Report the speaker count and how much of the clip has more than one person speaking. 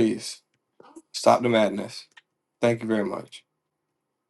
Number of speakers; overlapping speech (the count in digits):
1, no overlap